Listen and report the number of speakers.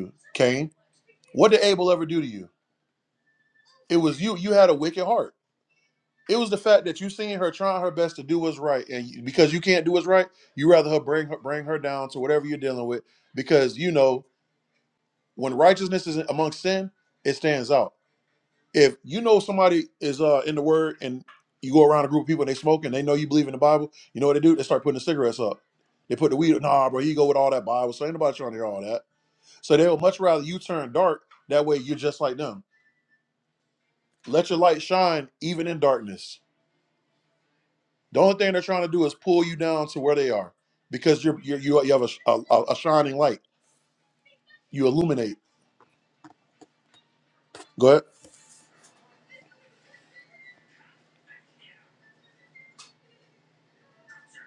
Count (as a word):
one